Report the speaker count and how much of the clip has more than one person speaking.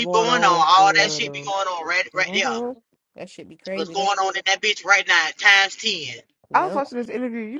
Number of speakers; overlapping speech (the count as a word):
three, about 33%